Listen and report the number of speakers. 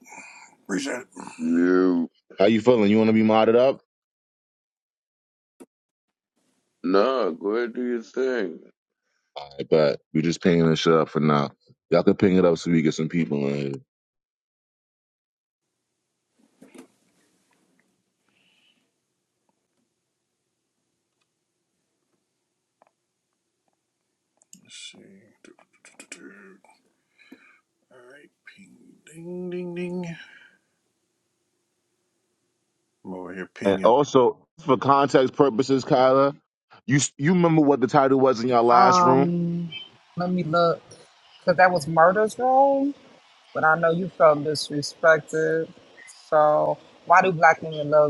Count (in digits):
4